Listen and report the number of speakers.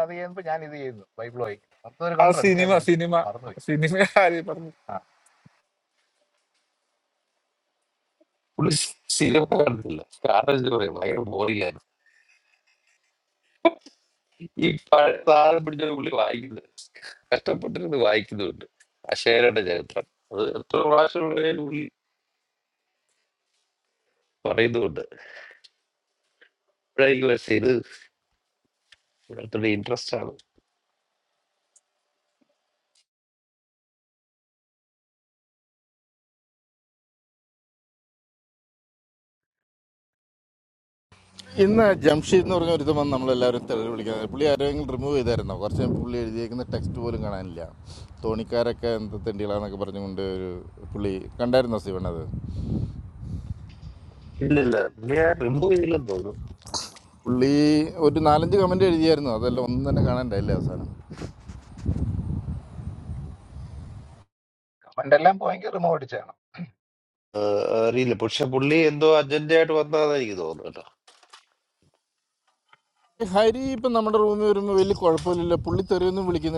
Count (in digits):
4